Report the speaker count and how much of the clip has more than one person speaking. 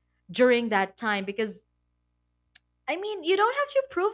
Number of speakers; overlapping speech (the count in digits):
1, no overlap